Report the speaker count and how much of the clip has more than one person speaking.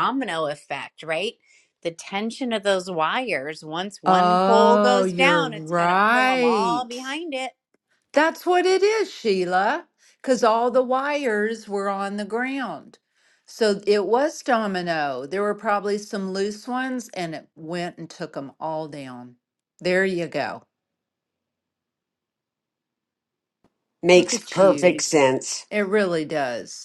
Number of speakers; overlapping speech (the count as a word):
three, about 12%